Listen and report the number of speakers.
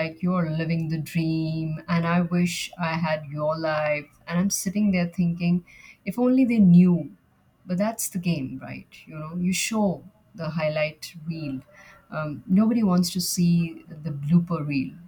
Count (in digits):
1